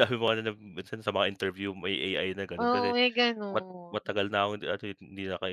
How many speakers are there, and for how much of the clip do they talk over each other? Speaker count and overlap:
two, about 14%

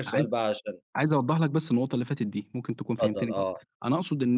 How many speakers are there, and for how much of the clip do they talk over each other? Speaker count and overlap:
two, about 17%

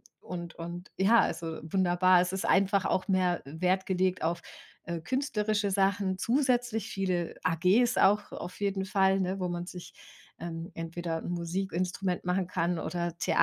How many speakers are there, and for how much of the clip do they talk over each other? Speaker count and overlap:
one, no overlap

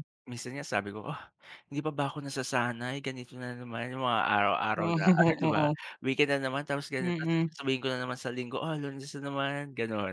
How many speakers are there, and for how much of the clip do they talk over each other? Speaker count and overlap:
two, about 7%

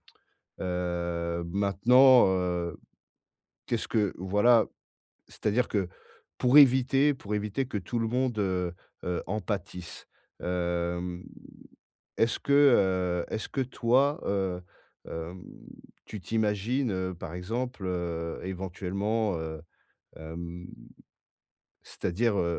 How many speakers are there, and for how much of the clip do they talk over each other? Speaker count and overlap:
one, no overlap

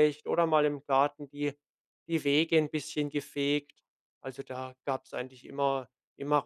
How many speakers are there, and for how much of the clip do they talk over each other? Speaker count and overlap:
one, no overlap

